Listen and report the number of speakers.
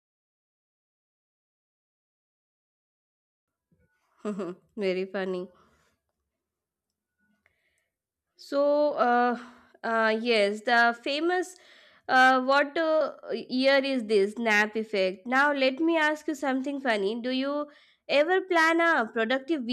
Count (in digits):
1